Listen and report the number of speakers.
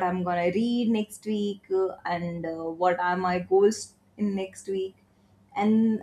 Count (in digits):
1